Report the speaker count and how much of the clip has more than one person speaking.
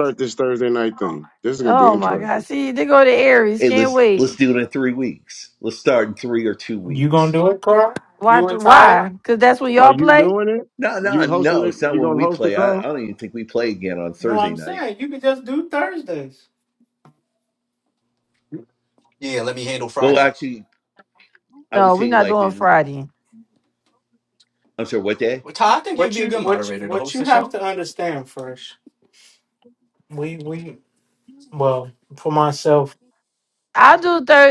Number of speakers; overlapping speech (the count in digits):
5, about 24%